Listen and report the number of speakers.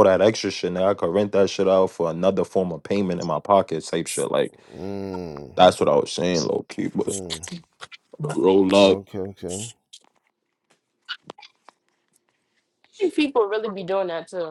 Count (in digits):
3